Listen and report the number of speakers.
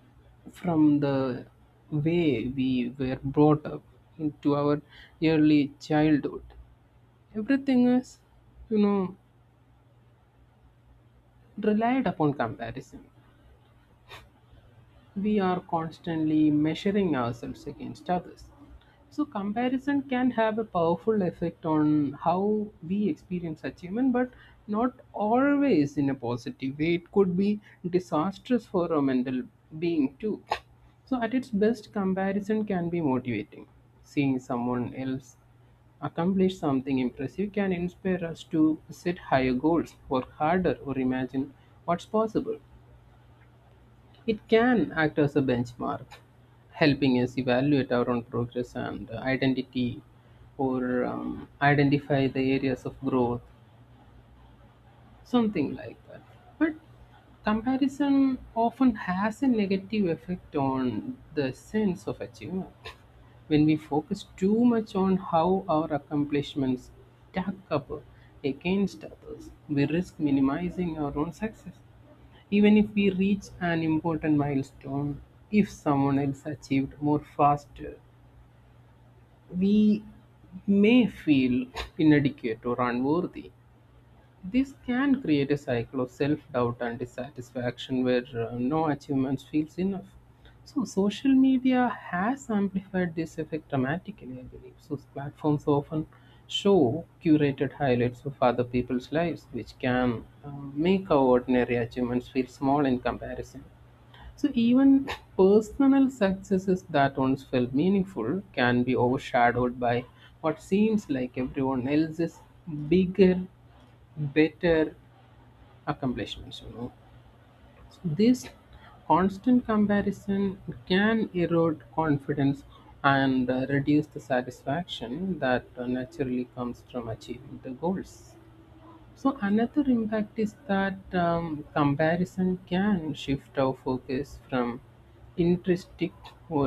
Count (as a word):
one